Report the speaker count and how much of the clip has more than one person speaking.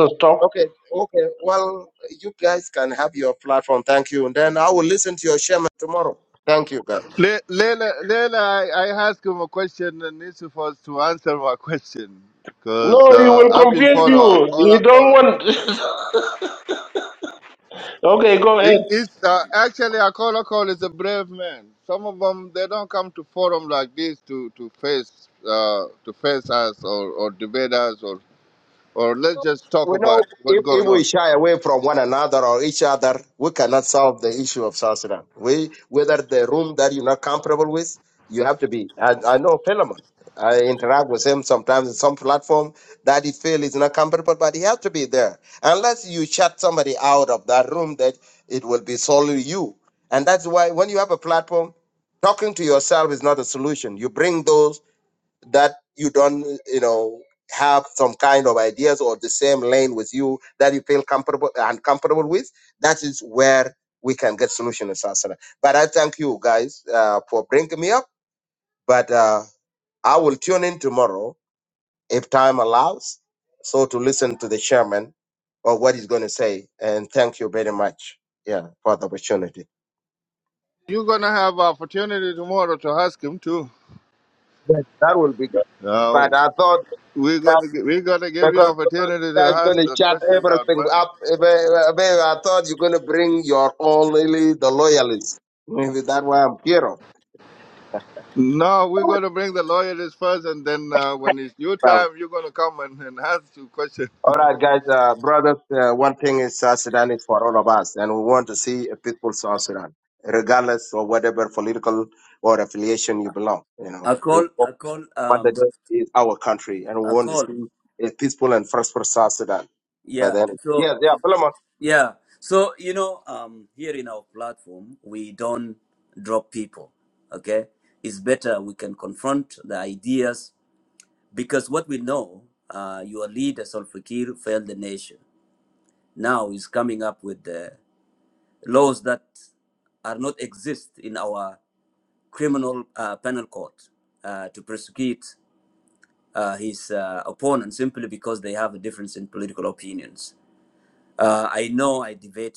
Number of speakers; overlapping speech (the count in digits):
4, about 6%